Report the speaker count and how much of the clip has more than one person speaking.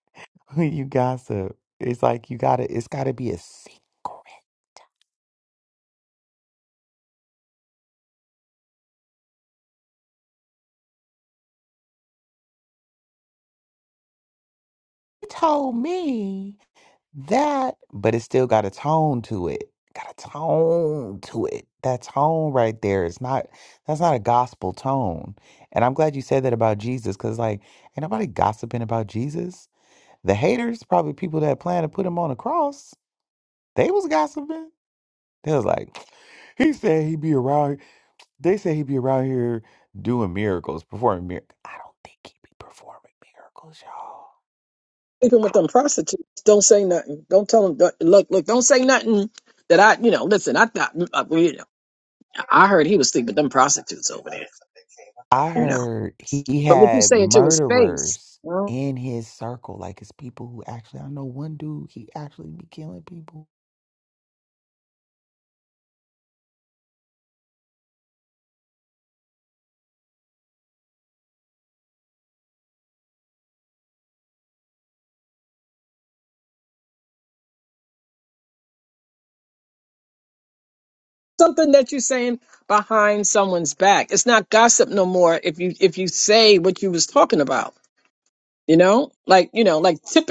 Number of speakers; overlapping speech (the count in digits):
2, about 2%